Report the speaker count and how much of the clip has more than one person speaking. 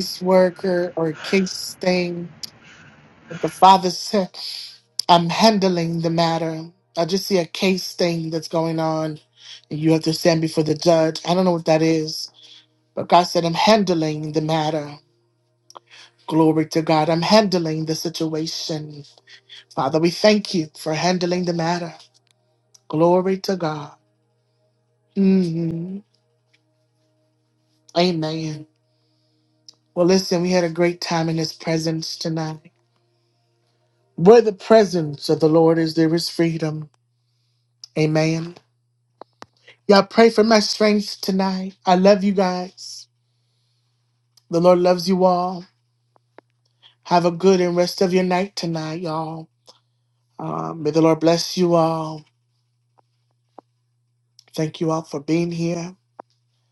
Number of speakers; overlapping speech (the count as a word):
one, no overlap